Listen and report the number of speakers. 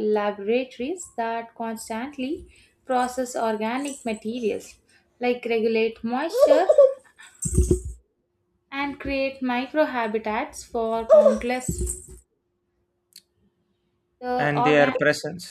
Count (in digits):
2